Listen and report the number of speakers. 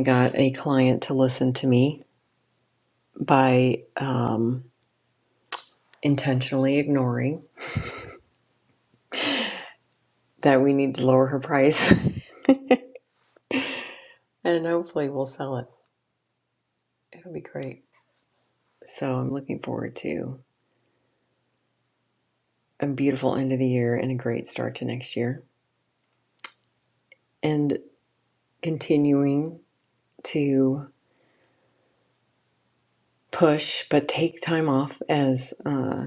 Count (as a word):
one